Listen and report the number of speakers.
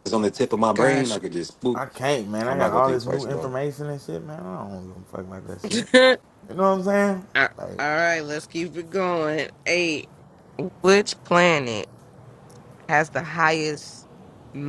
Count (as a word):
three